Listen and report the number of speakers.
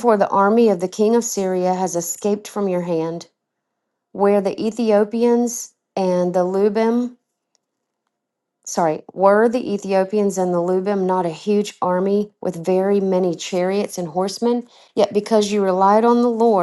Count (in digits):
1